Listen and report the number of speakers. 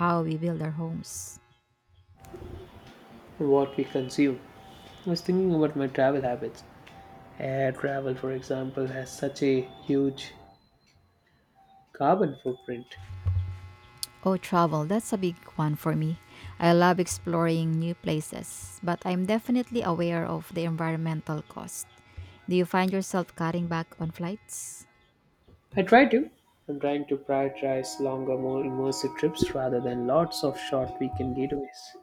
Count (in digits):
2